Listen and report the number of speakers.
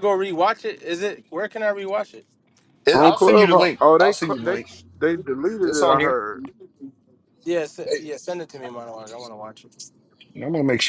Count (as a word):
three